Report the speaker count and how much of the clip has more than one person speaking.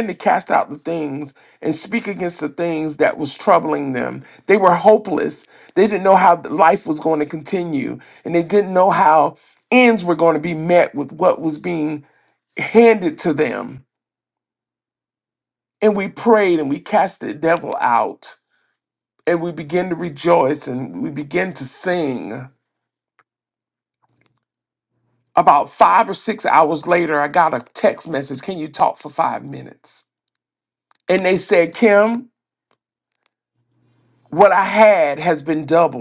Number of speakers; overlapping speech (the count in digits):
1, no overlap